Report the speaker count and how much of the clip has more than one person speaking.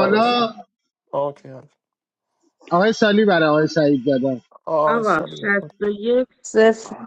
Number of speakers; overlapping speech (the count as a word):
three, about 18%